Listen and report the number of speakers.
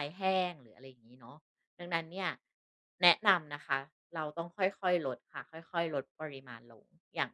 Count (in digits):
1